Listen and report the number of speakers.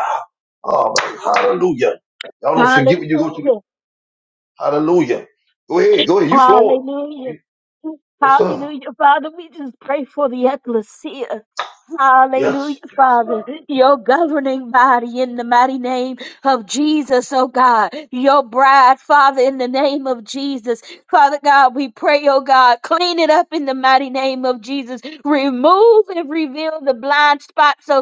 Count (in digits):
2